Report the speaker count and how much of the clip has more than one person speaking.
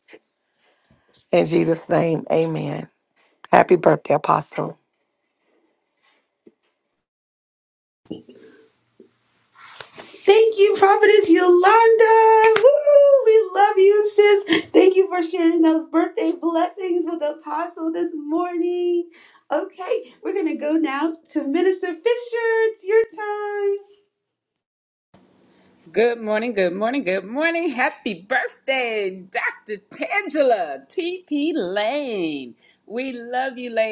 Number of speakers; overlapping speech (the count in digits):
3, no overlap